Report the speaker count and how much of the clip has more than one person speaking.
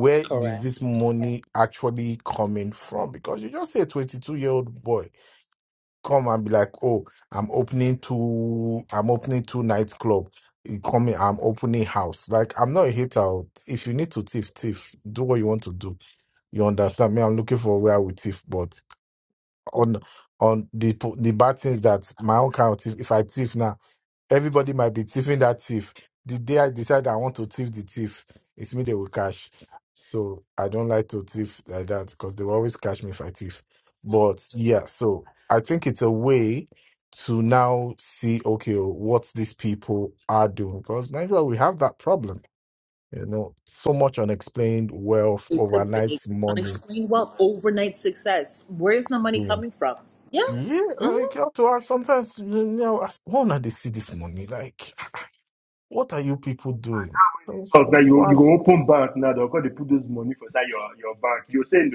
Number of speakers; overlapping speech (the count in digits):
3, about 4%